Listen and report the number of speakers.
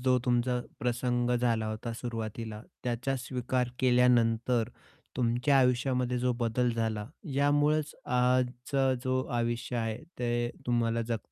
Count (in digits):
1